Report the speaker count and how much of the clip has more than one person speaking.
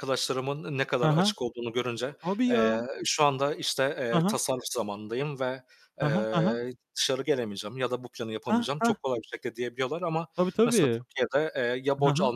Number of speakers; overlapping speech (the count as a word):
two, about 23%